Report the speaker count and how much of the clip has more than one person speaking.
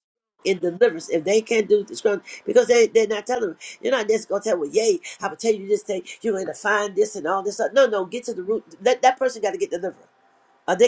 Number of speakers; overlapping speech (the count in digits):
1, no overlap